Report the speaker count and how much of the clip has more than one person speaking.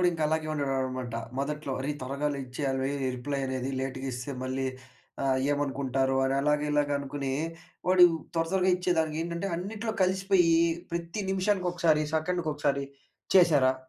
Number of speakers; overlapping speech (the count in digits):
1, no overlap